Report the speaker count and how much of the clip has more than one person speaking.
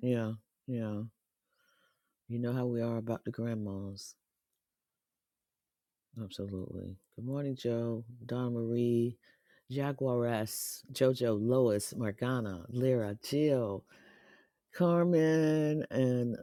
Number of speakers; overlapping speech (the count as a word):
one, no overlap